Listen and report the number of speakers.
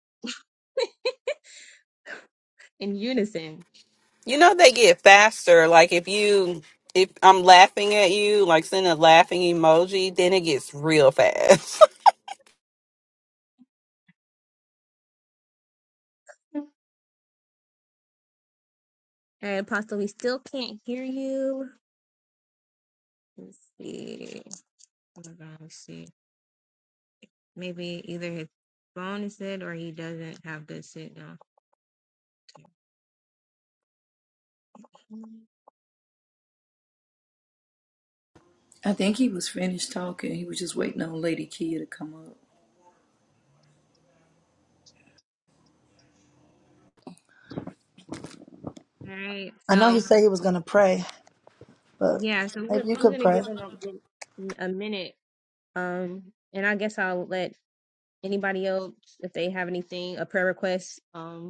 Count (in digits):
4